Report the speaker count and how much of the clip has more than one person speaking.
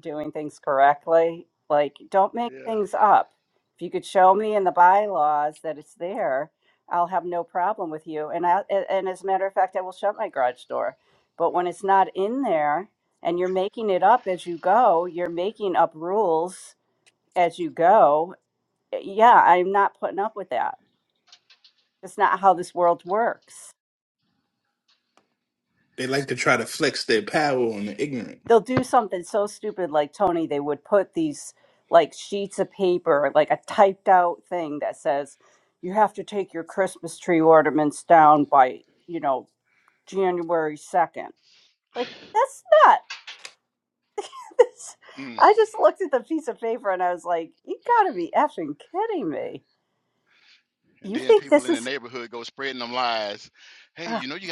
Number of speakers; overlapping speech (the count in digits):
3, about 2%